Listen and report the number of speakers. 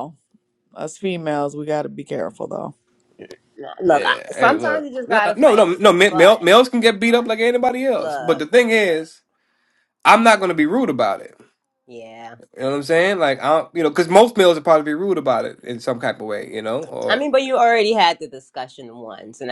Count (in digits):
3